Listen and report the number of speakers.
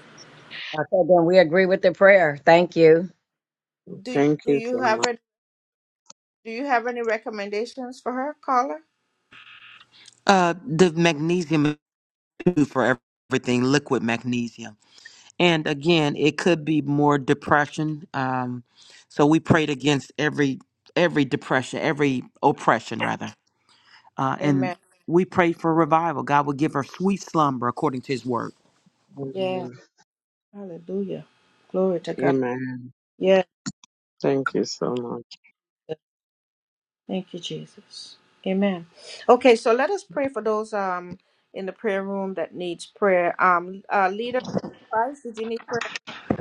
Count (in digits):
4